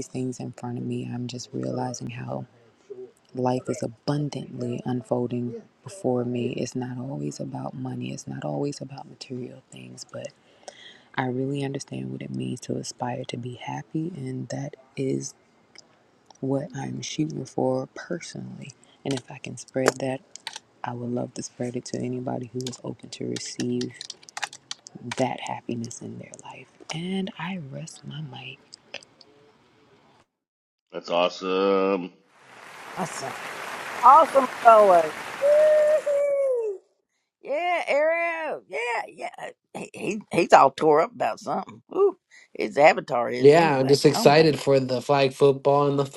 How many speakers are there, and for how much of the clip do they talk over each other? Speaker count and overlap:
four, about 2%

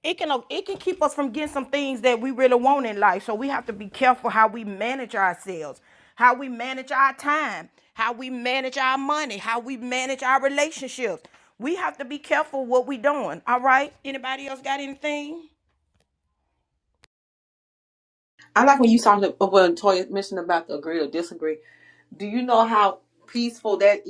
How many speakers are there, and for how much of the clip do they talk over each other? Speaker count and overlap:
two, no overlap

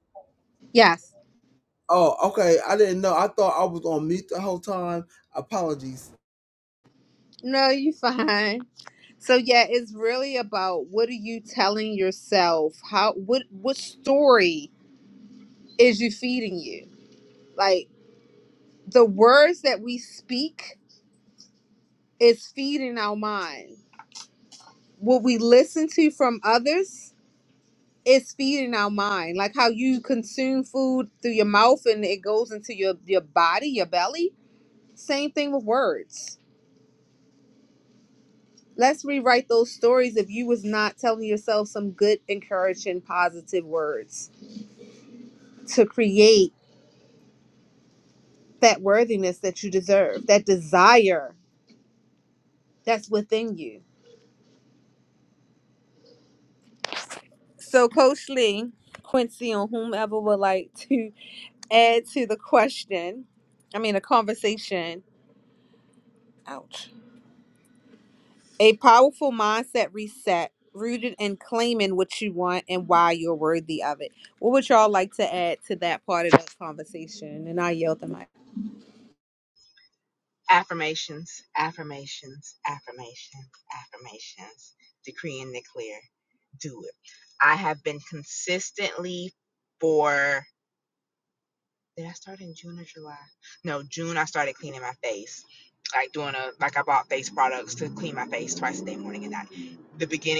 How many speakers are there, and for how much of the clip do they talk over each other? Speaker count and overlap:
three, no overlap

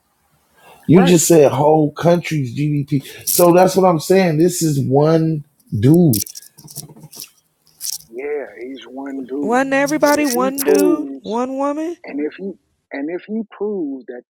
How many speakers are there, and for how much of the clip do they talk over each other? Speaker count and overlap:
three, about 13%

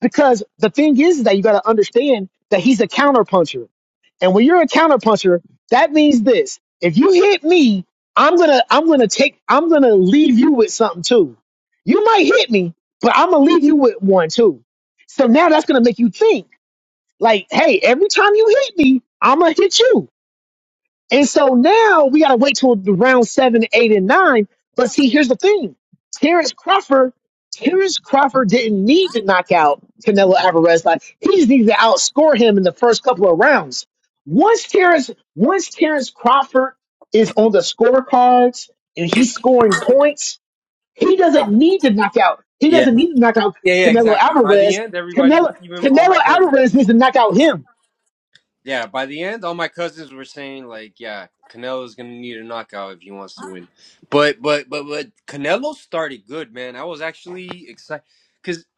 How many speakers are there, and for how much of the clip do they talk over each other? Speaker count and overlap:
two, about 5%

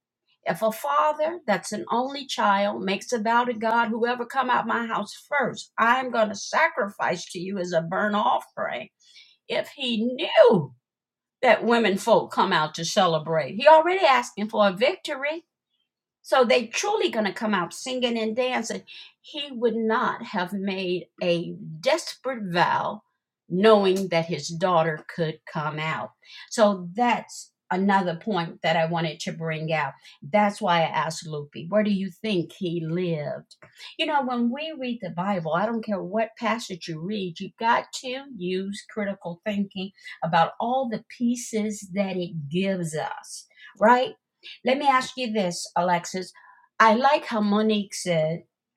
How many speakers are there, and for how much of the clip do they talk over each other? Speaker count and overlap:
one, no overlap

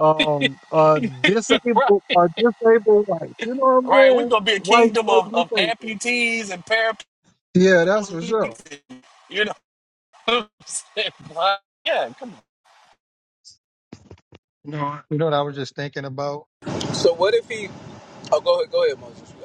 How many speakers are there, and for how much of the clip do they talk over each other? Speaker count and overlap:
four, about 13%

